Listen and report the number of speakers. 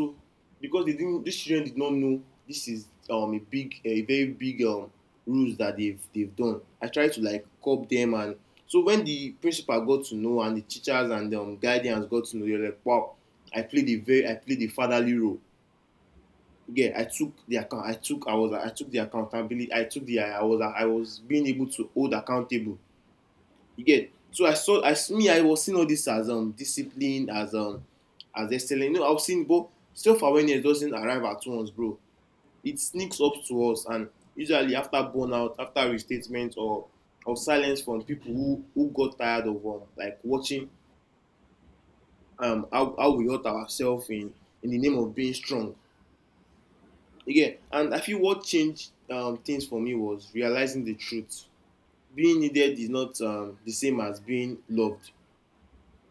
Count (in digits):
1